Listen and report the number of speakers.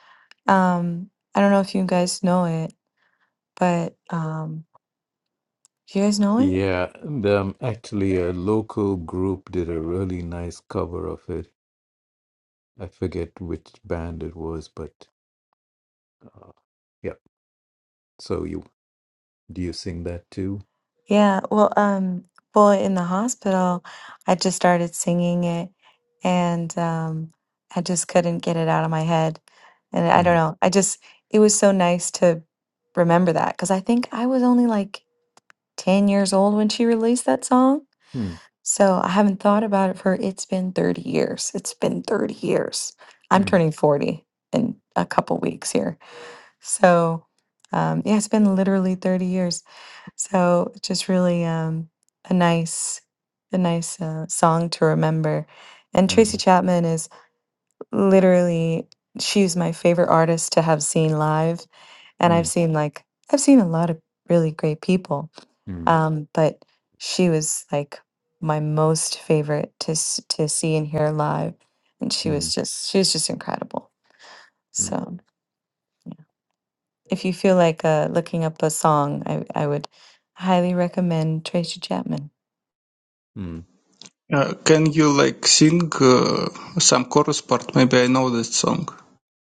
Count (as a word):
three